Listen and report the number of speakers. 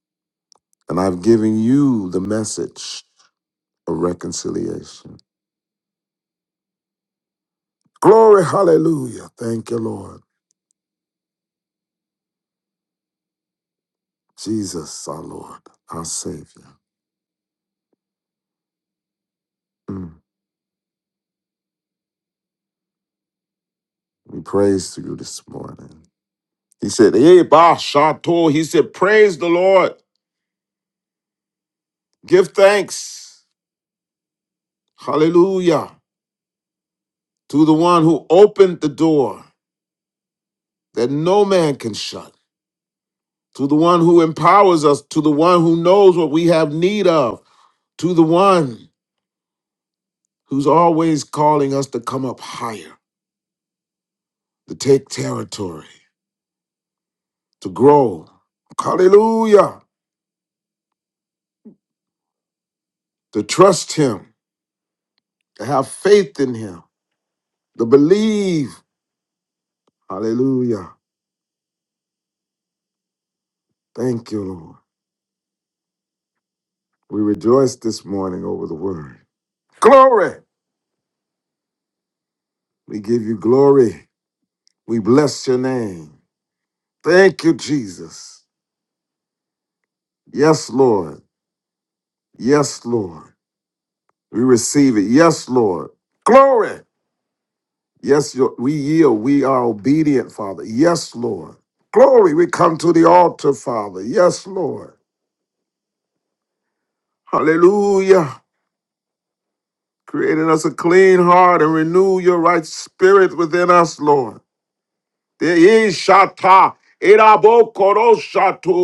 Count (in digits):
1